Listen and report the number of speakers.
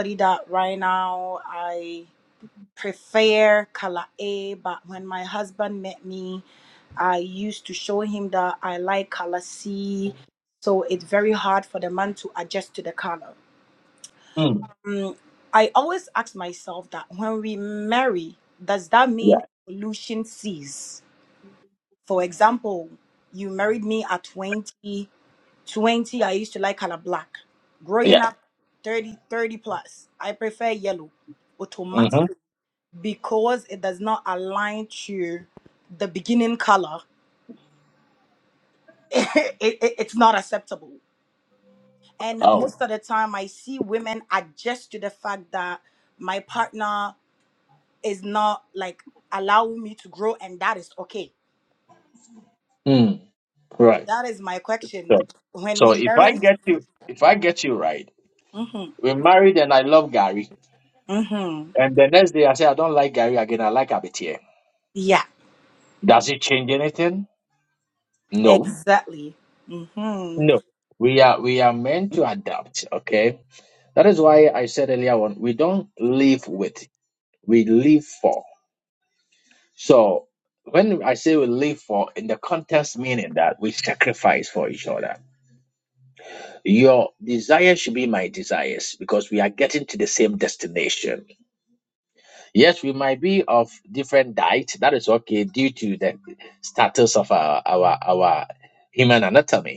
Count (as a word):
two